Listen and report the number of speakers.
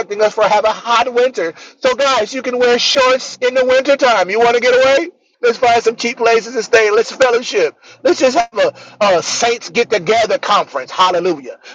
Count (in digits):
1